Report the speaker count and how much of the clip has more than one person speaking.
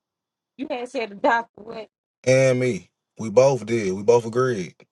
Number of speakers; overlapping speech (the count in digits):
2, no overlap